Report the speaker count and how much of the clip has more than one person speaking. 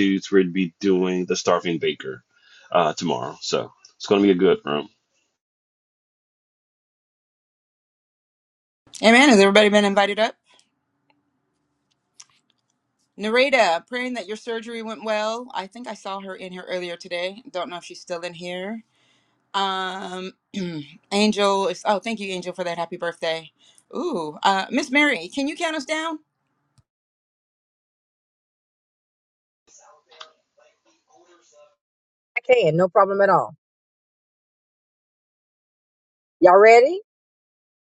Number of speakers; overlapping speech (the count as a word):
three, no overlap